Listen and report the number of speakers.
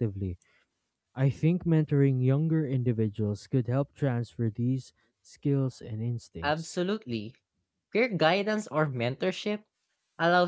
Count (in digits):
2